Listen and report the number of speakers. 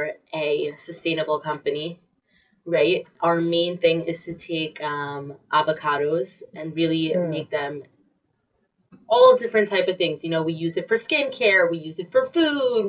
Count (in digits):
1